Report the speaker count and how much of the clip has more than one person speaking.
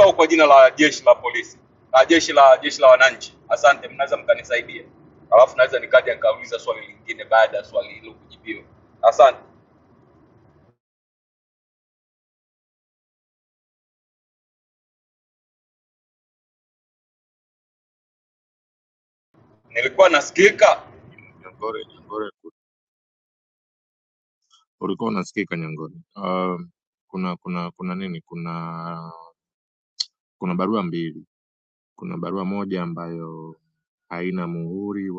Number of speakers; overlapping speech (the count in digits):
2, no overlap